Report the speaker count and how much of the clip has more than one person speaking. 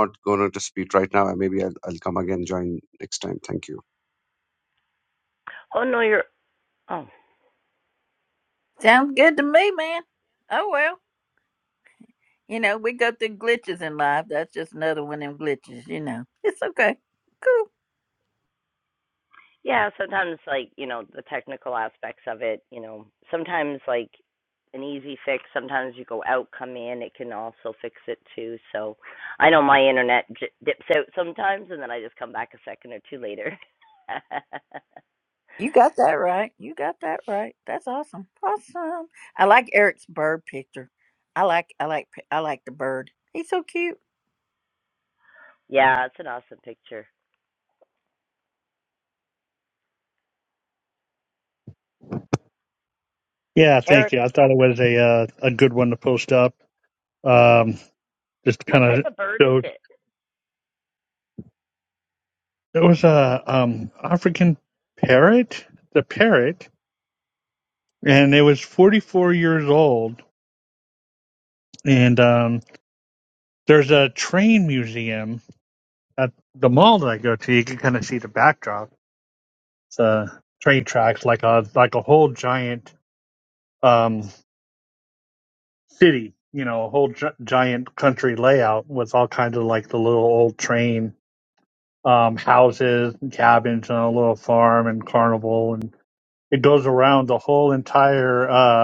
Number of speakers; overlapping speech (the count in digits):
4, about 1%